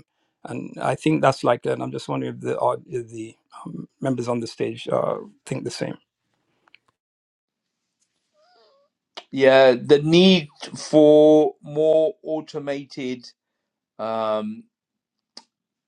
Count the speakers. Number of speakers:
2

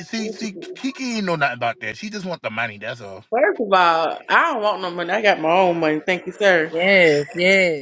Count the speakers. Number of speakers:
3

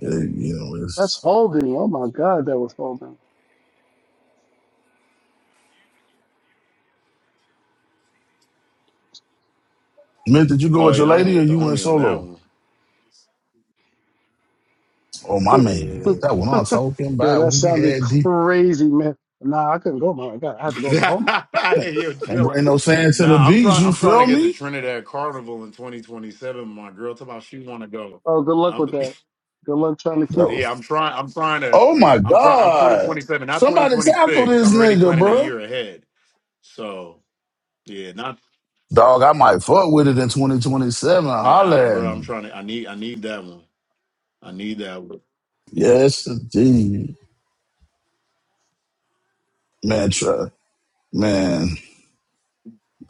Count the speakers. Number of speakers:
3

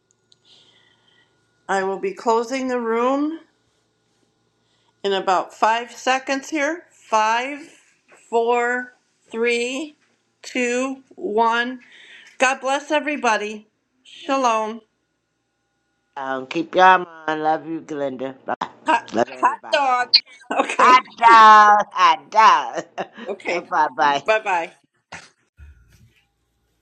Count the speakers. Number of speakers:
2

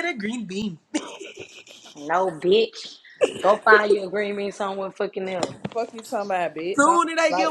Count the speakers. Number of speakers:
3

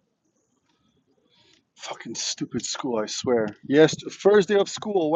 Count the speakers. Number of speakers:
1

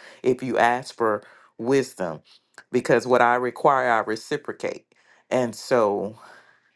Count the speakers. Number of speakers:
1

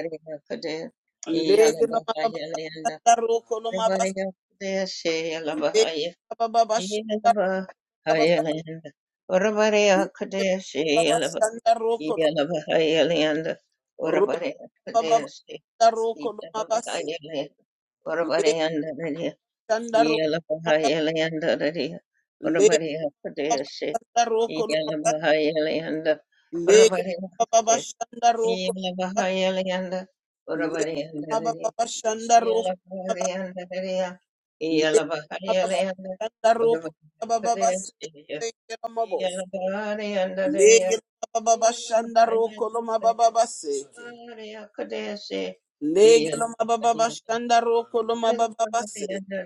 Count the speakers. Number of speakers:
2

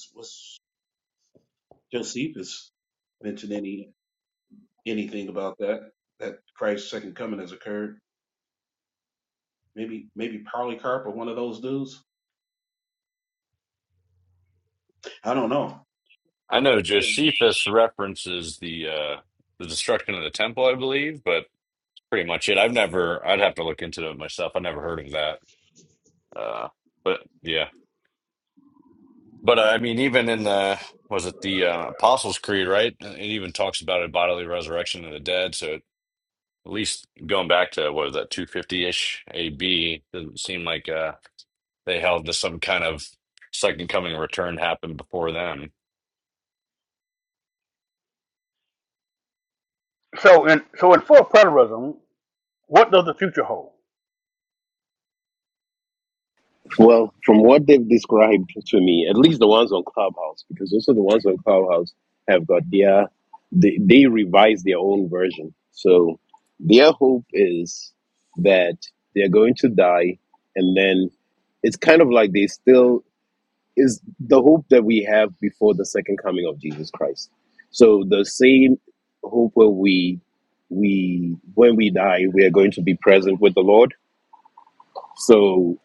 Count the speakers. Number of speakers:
4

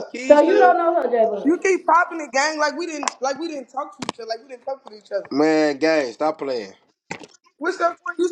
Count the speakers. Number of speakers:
3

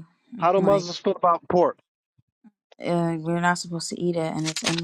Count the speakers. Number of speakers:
2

